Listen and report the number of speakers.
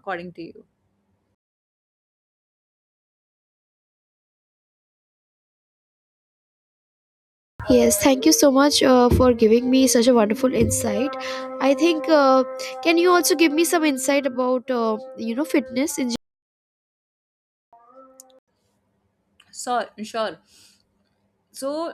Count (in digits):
2